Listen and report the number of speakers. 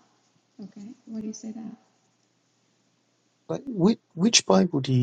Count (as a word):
two